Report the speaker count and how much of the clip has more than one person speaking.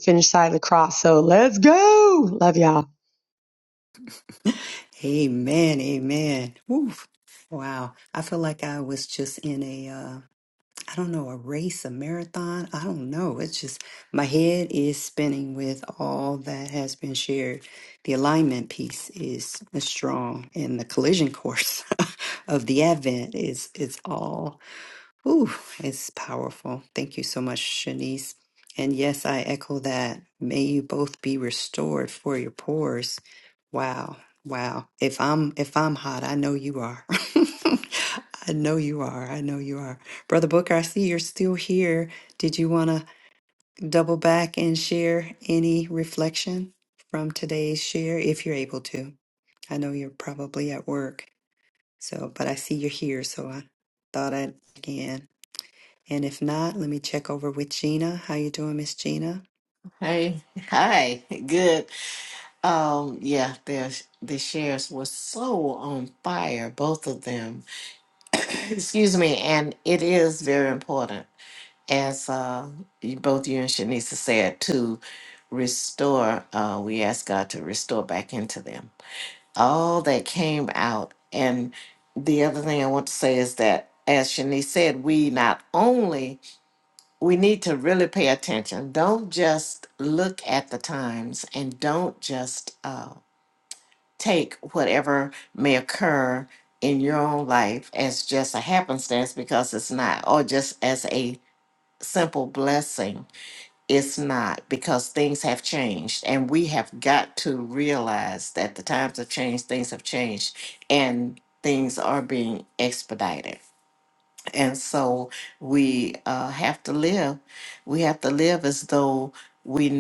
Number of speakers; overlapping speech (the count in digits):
3, no overlap